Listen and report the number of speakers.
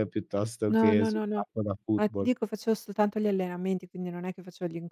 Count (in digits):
2